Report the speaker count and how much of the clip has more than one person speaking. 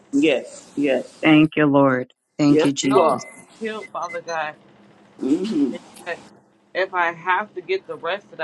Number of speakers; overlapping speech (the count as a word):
three, about 9%